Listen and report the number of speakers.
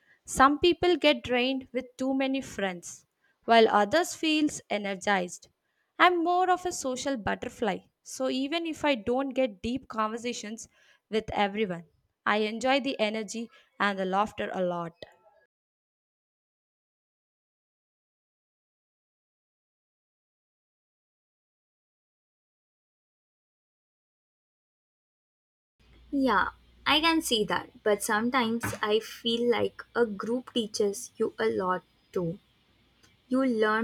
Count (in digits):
2